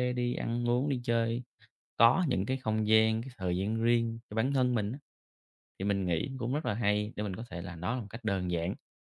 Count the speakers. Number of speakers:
one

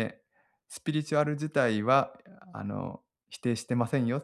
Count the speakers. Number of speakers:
one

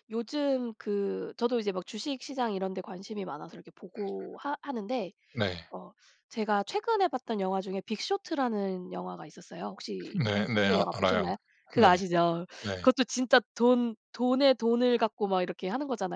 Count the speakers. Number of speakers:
two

